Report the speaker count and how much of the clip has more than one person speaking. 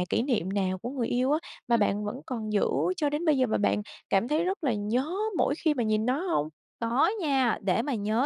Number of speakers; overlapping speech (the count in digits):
2, about 1%